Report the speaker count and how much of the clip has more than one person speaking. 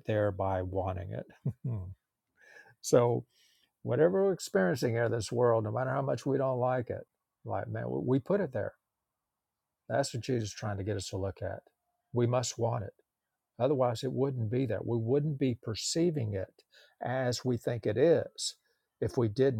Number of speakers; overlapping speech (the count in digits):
1, no overlap